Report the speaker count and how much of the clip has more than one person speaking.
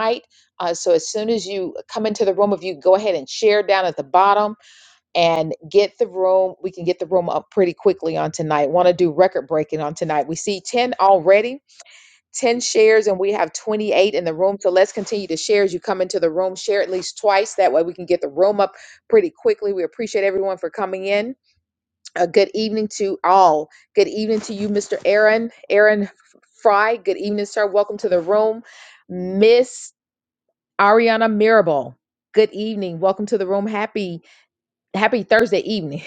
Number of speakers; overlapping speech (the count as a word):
one, no overlap